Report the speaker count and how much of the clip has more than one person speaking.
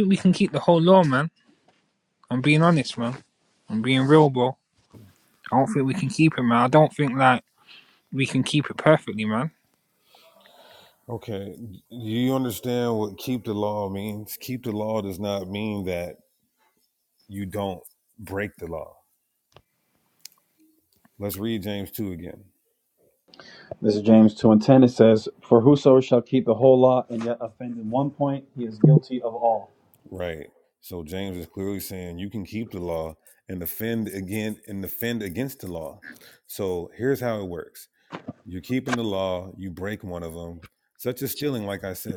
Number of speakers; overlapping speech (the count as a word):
three, no overlap